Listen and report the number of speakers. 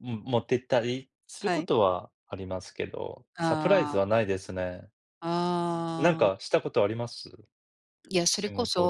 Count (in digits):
2